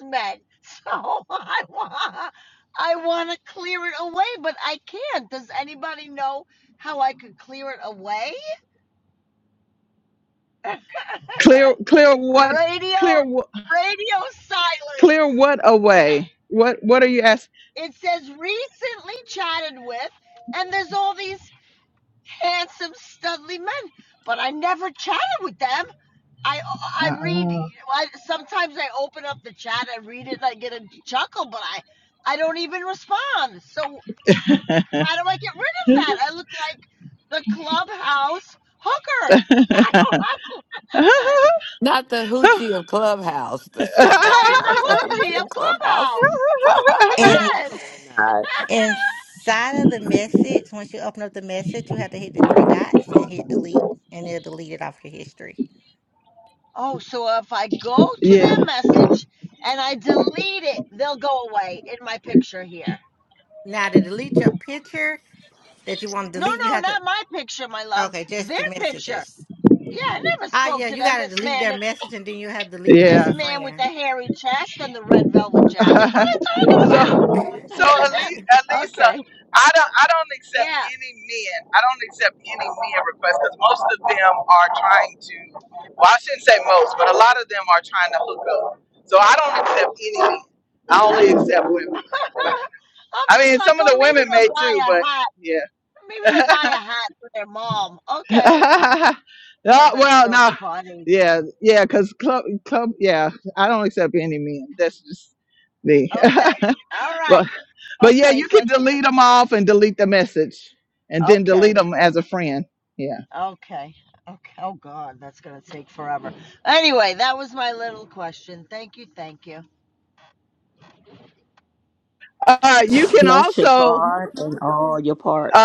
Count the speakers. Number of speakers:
5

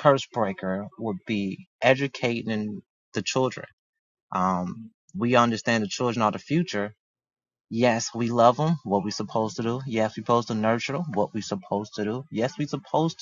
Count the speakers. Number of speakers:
1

